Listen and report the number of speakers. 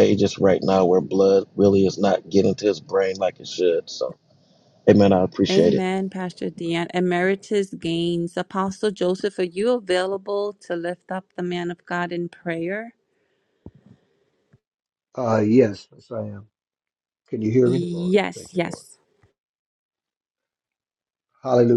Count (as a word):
three